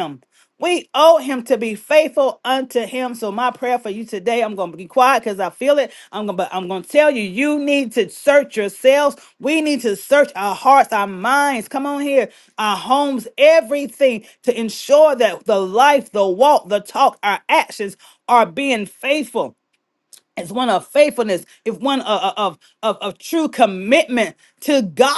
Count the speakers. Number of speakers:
one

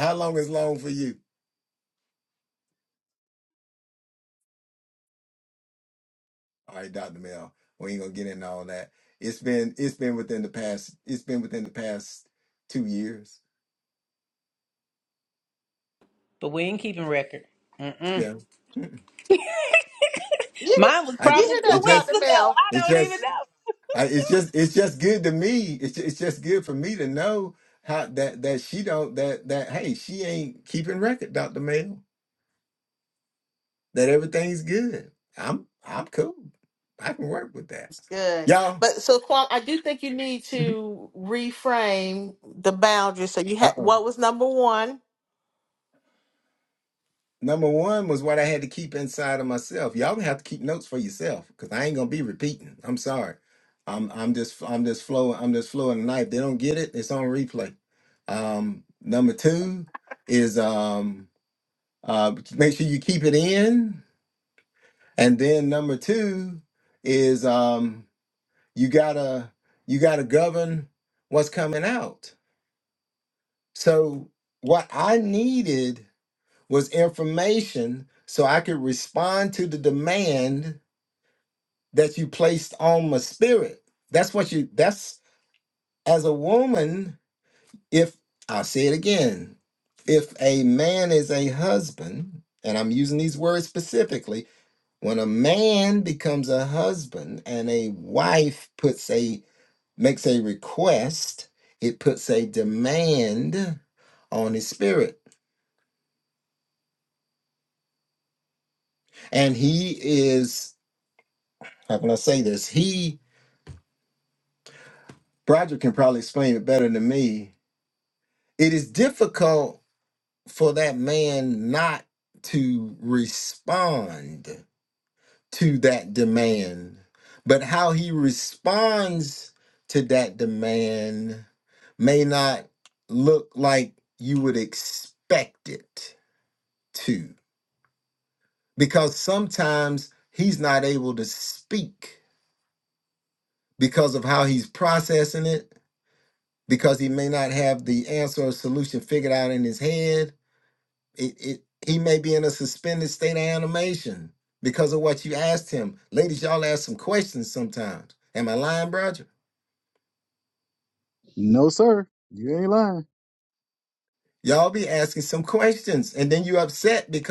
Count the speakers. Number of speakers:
four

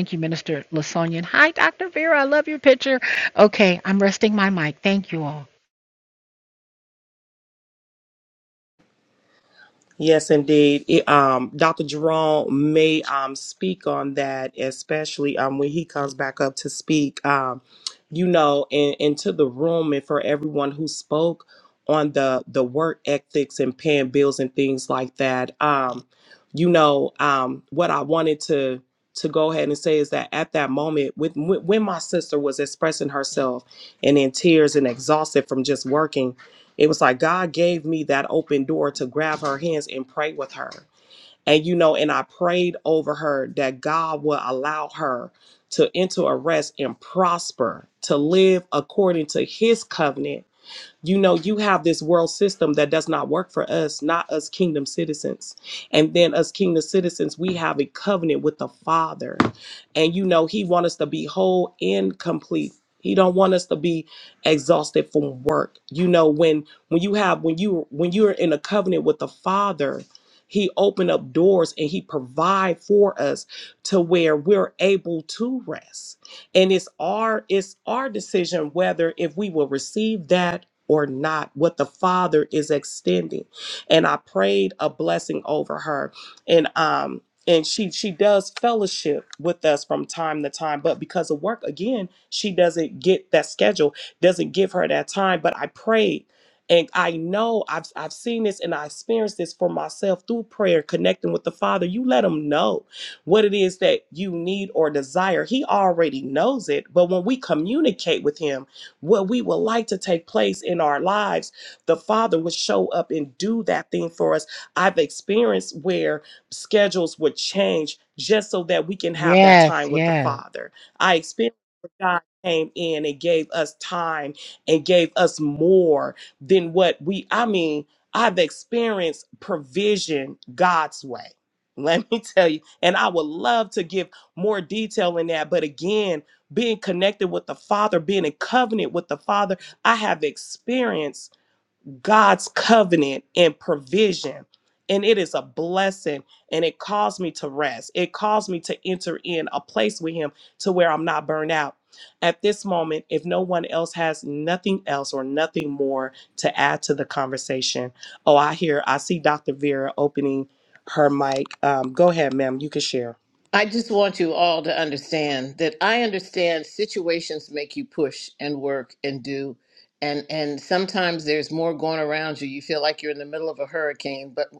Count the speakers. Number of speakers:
three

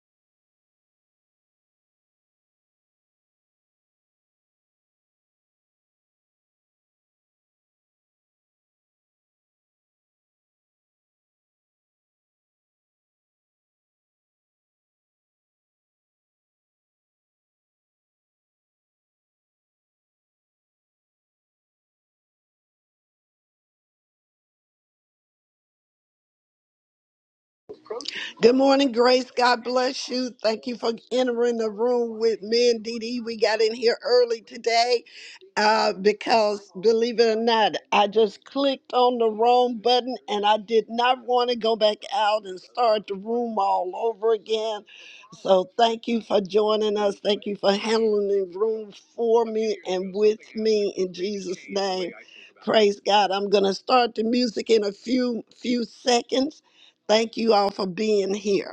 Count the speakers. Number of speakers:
one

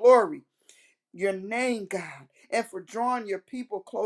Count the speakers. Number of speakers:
one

